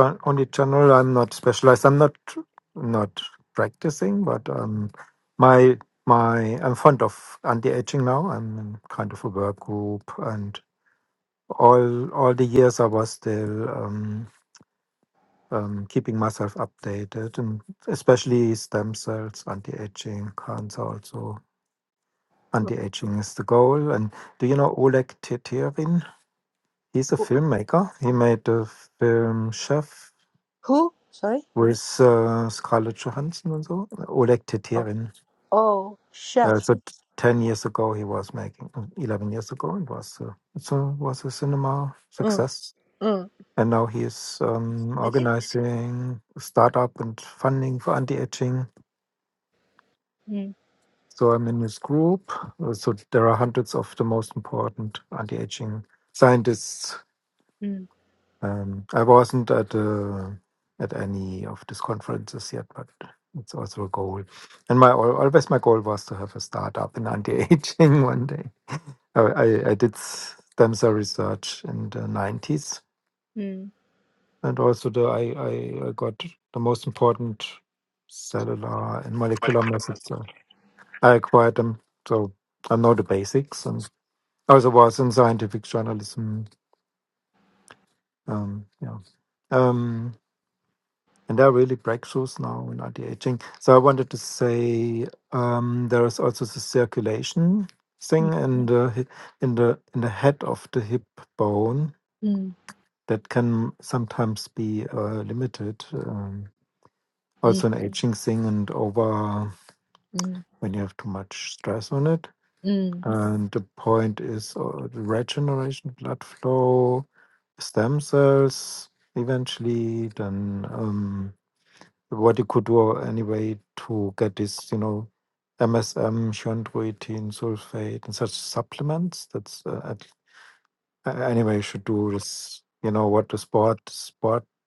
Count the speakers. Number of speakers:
2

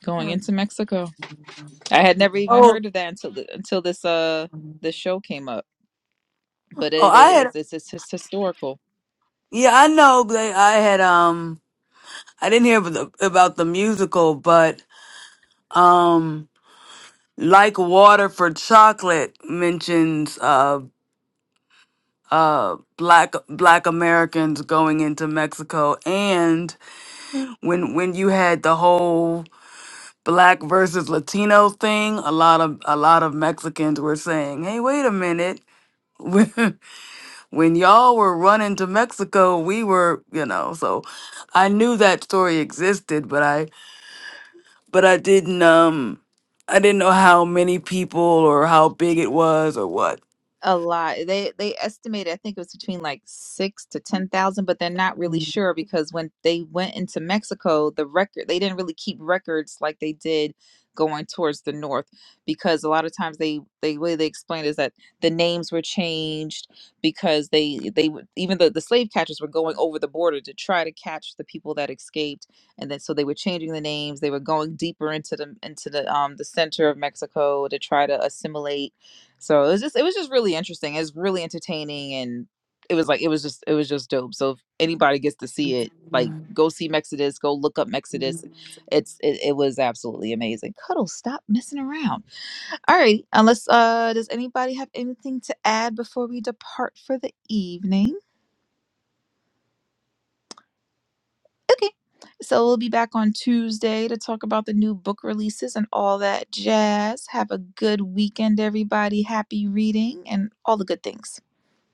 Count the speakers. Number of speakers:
2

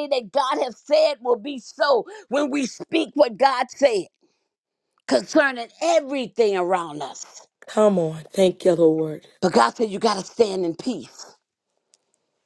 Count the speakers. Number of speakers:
2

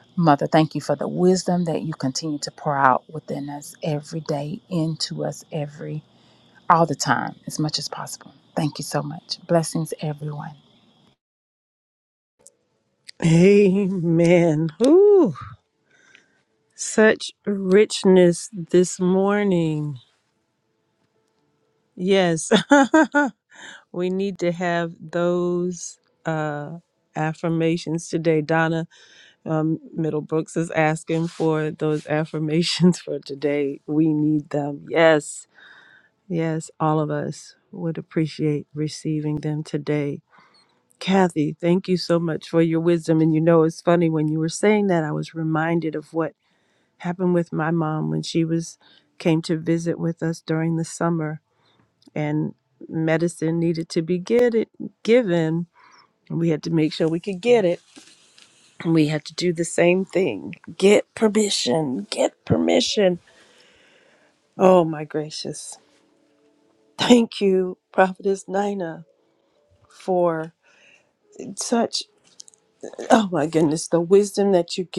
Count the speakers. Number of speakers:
2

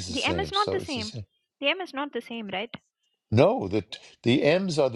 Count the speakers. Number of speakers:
2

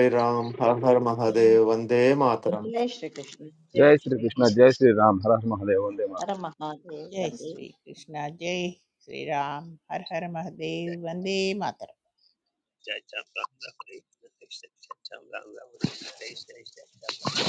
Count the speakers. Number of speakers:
5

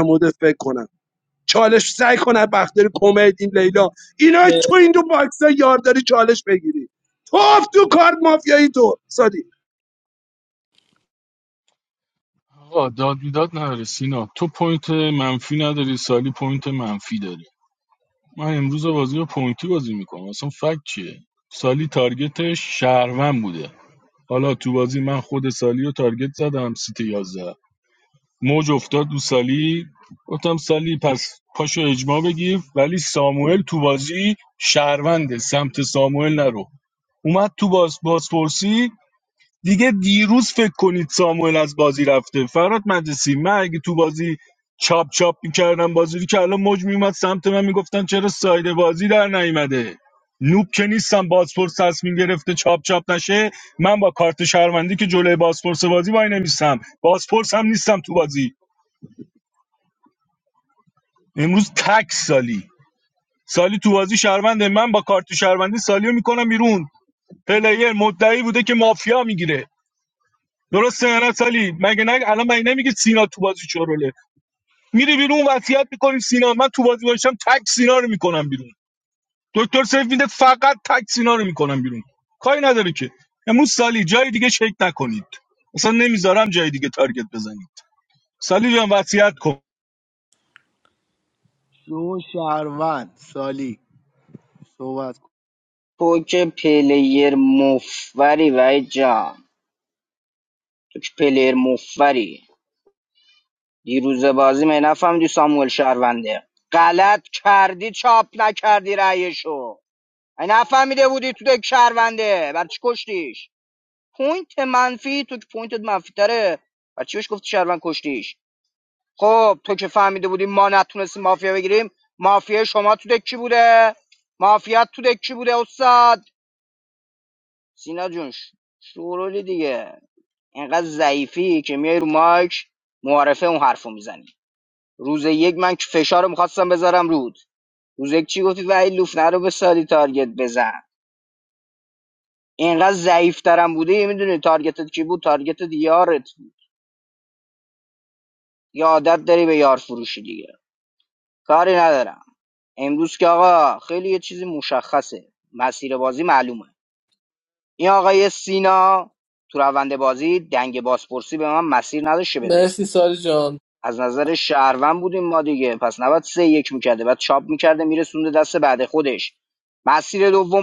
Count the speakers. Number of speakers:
5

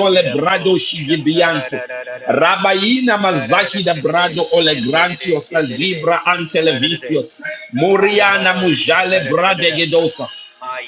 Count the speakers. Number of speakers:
2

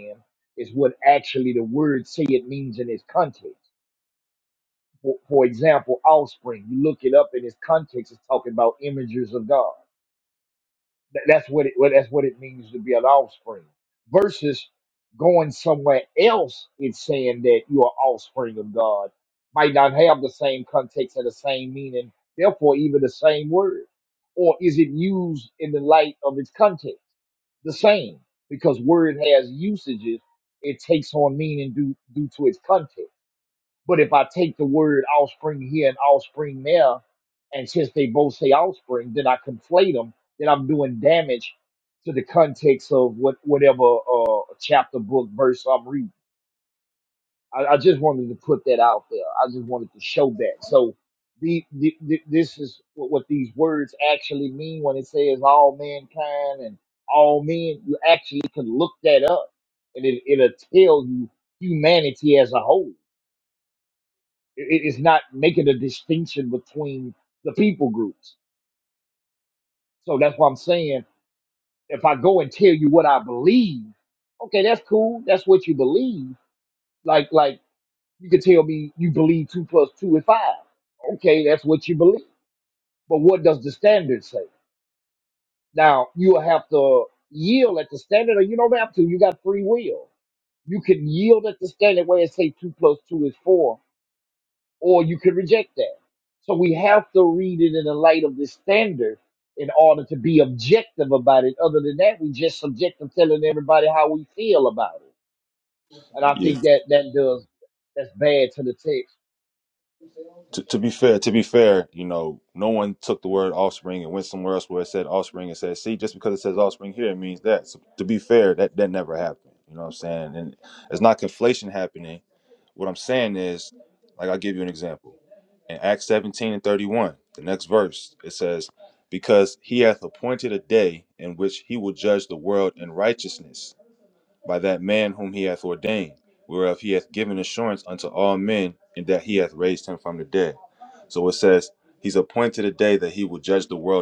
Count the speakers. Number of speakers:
2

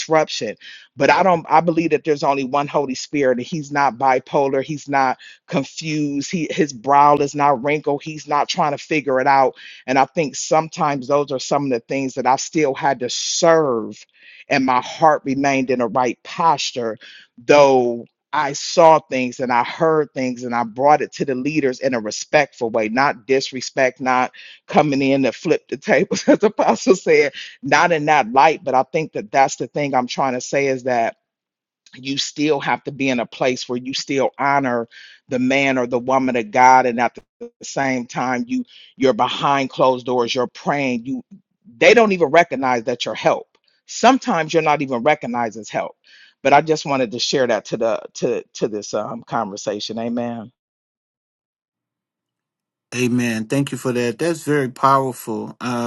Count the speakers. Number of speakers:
2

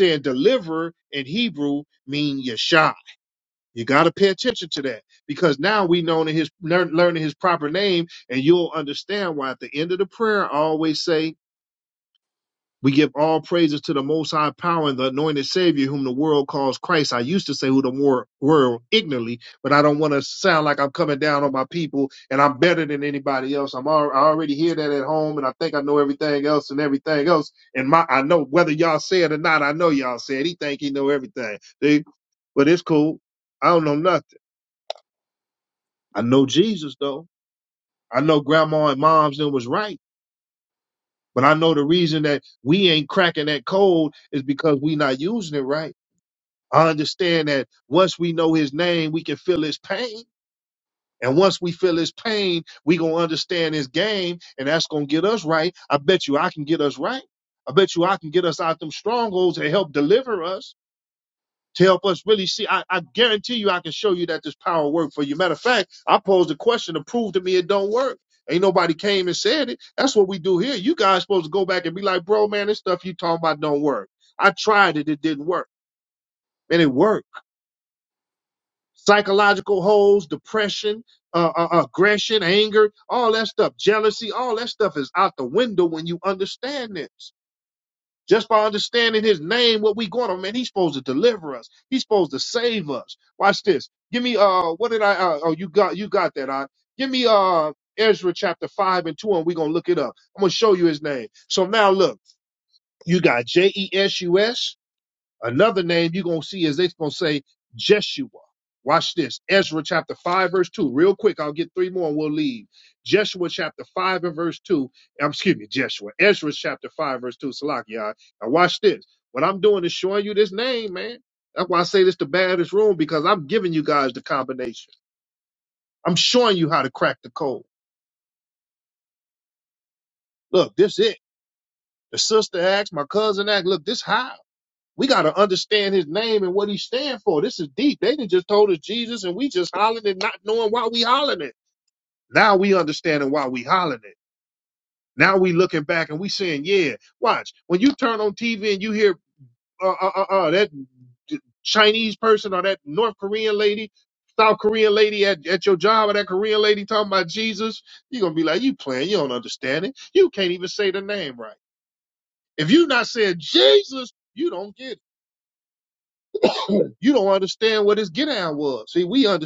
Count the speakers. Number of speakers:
1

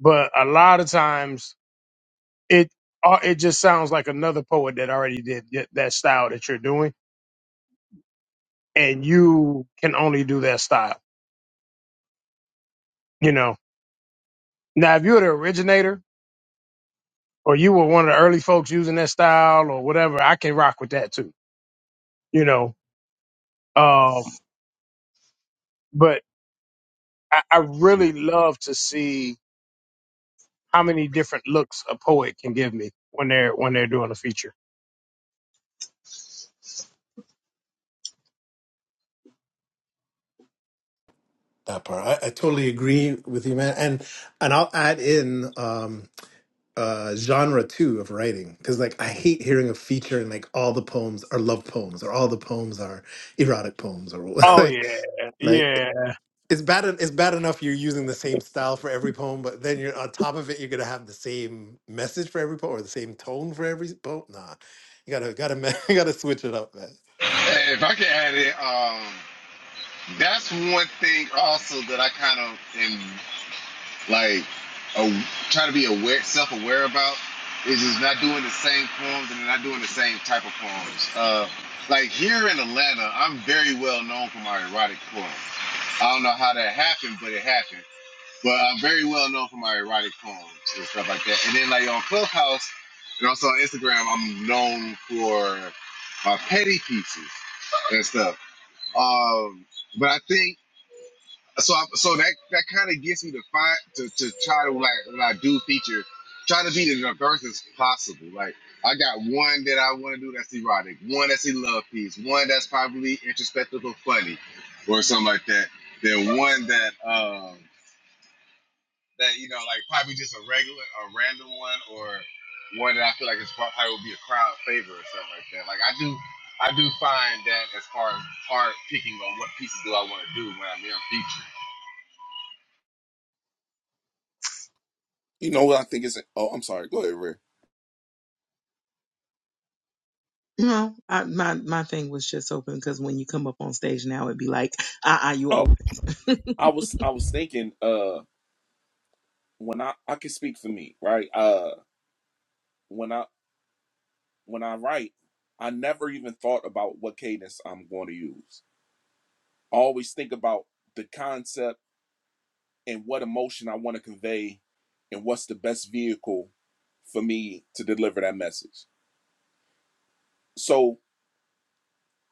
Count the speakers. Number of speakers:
5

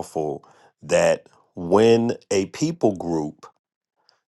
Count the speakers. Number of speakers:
1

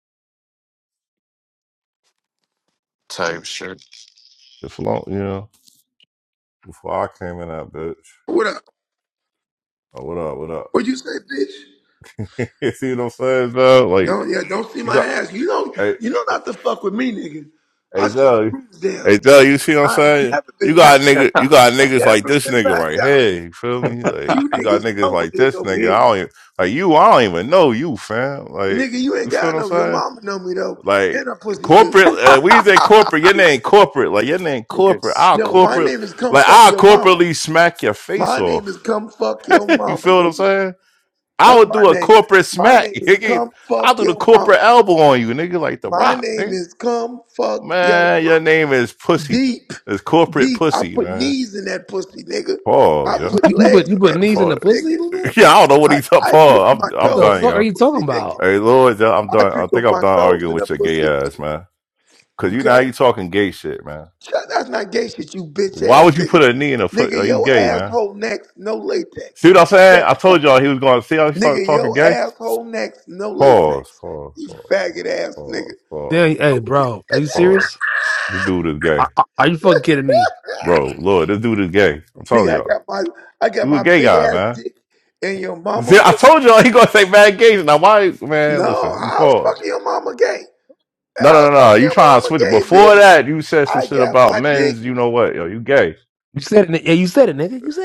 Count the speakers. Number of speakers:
4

